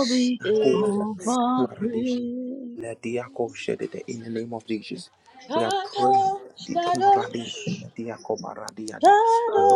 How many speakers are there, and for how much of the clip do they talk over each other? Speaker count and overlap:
3, about 33%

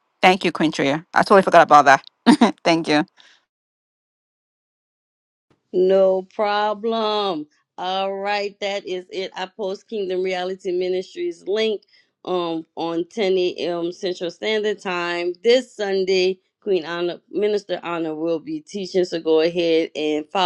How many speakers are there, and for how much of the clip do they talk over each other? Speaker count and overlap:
2, no overlap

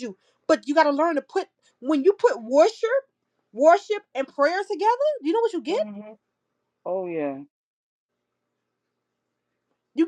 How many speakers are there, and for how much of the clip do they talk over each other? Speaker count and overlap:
2, about 2%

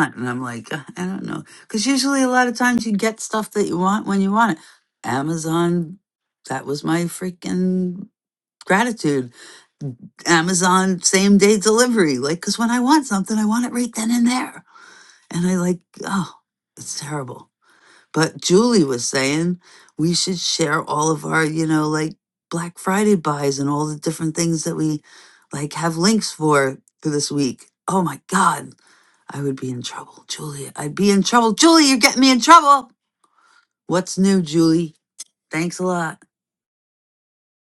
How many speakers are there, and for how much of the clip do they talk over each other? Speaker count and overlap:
1, no overlap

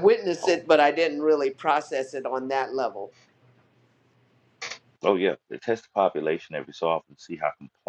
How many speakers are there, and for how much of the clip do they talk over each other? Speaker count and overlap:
2, about 3%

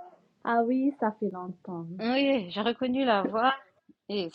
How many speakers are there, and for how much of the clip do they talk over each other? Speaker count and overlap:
2, no overlap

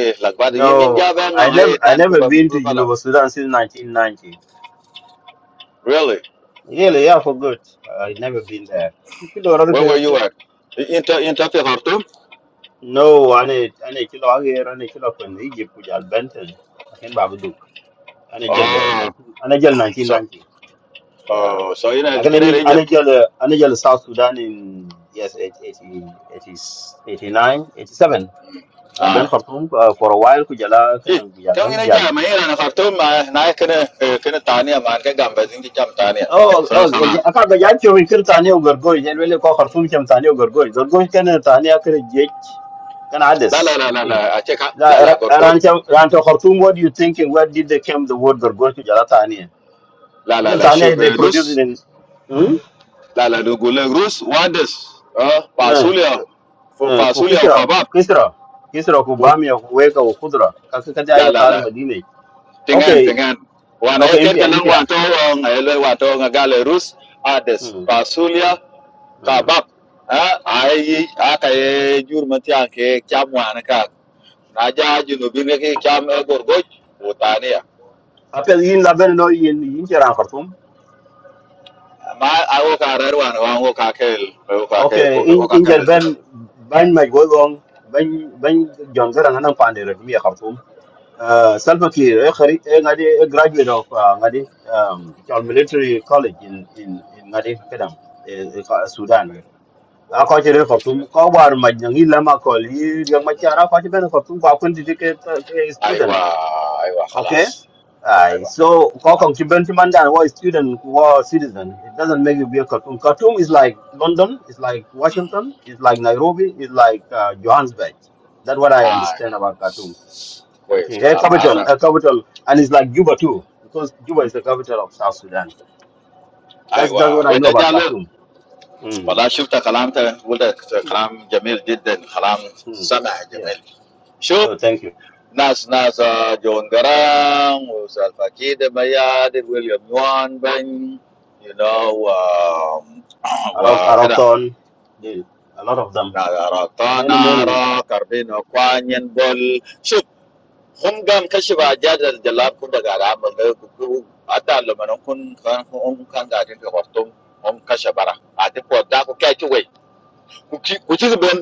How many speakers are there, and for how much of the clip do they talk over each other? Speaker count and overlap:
2, about 11%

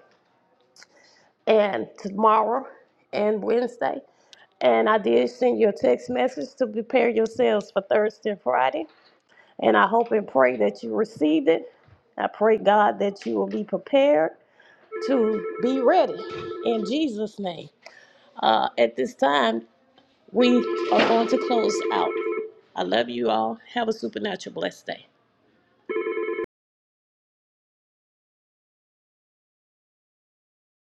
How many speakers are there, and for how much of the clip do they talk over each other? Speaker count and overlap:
1, no overlap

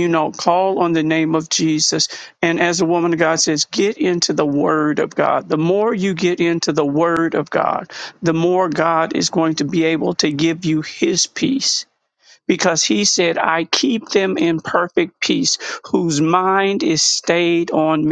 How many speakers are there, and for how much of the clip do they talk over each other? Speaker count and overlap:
1, no overlap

